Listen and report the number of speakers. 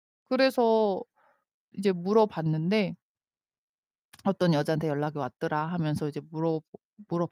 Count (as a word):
one